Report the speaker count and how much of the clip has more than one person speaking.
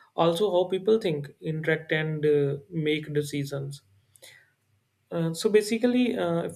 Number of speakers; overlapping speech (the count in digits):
1, no overlap